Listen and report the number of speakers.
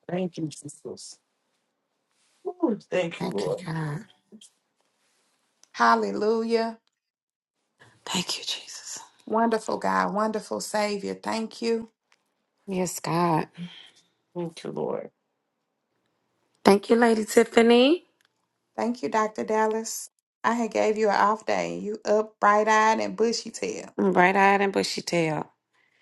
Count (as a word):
three